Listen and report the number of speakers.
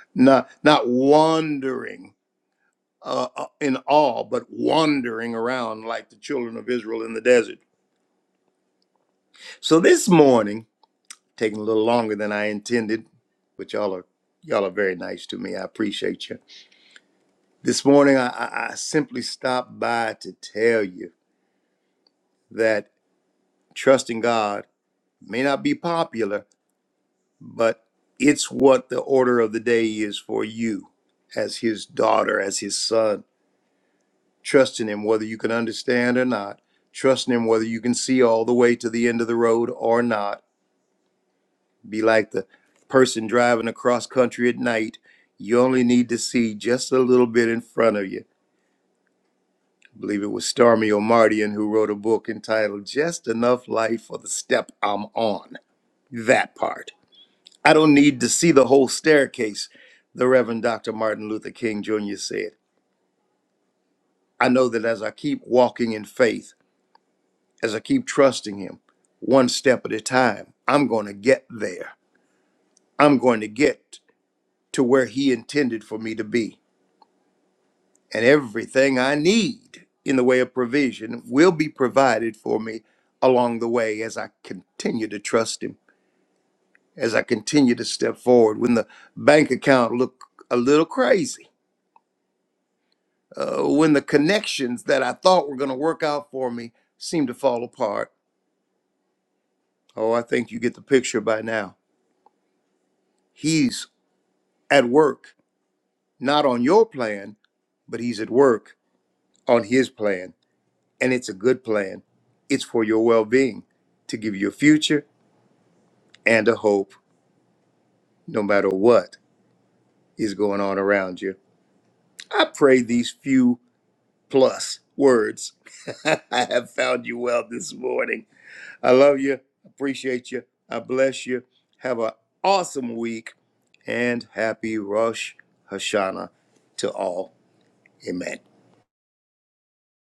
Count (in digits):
1